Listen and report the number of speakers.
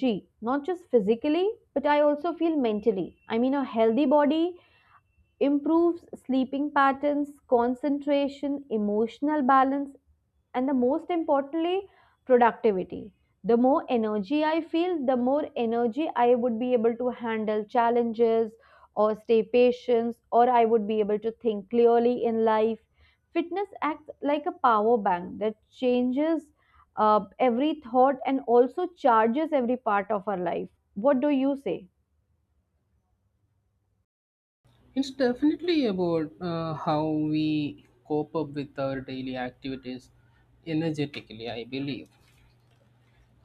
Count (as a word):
two